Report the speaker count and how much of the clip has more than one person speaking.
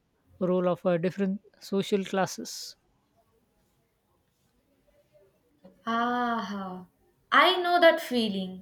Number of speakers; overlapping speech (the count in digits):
2, no overlap